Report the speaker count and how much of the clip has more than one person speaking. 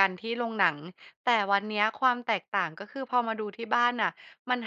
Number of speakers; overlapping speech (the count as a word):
one, no overlap